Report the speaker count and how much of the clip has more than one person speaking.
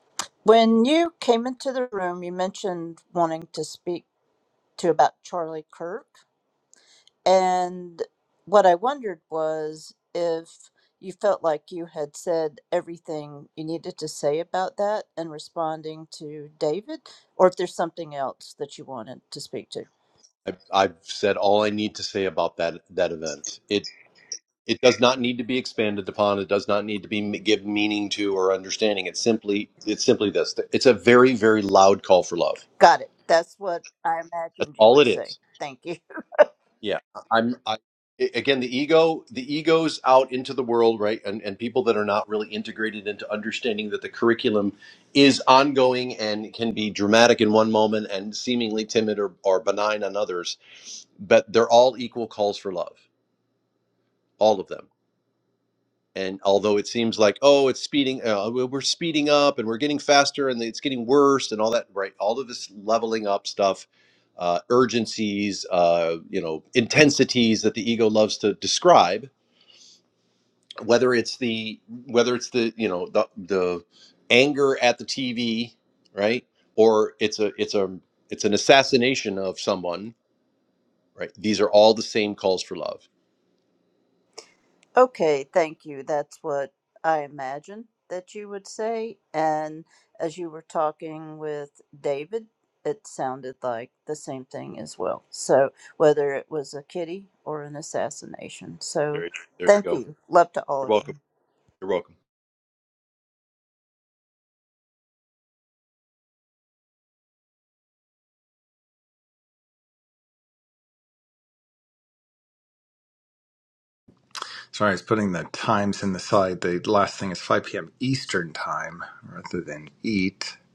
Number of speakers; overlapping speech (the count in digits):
3, about 1%